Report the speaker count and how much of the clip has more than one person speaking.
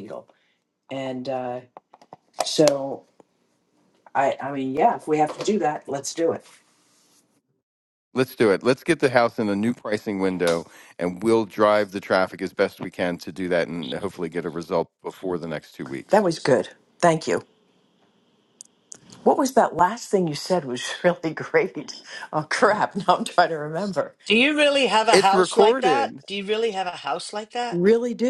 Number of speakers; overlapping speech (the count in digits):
3, about 4%